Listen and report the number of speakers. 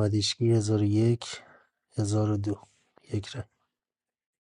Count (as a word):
one